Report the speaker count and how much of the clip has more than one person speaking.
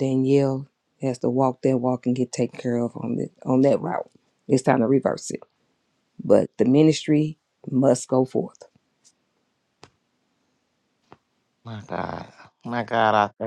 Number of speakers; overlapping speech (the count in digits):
2, no overlap